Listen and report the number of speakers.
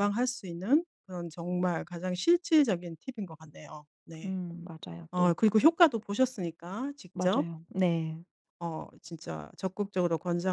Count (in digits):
2